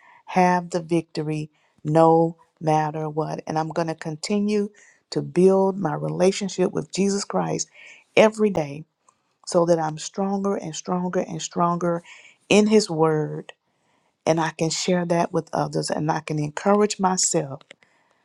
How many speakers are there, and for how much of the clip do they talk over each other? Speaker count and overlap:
1, no overlap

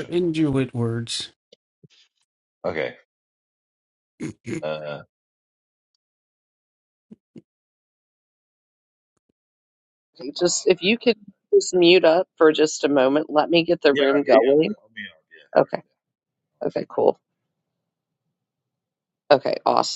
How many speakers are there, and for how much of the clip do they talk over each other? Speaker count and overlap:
3, about 7%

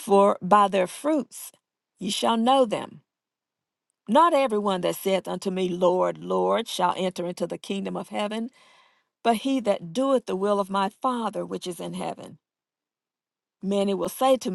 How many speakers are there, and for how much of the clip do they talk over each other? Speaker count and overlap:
1, no overlap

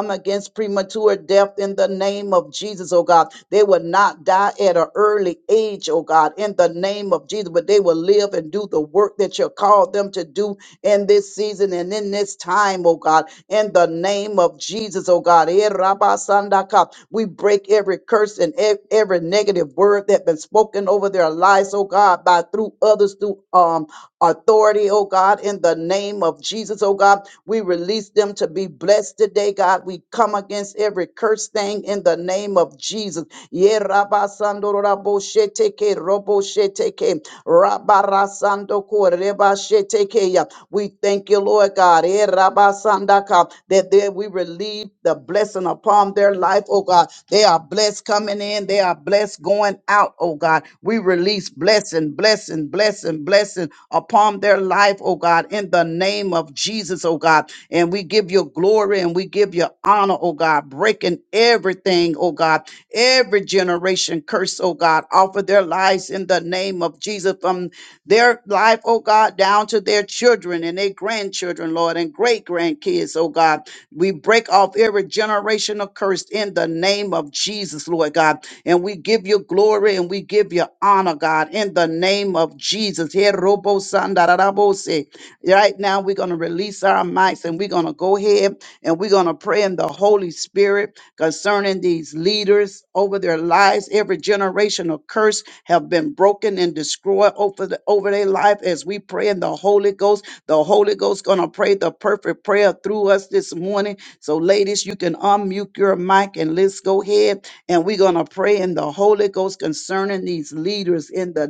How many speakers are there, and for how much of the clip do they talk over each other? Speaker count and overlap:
1, no overlap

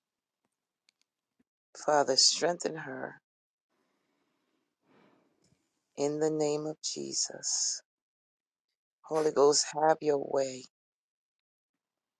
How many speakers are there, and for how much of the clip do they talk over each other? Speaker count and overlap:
1, no overlap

